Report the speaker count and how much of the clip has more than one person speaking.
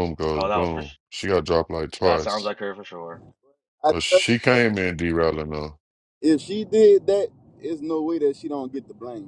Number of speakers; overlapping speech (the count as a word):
three, about 15%